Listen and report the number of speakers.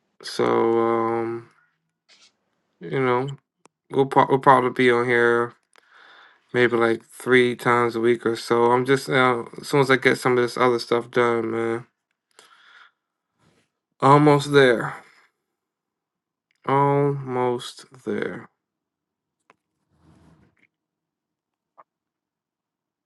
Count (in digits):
1